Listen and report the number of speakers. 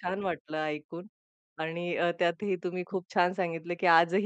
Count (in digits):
1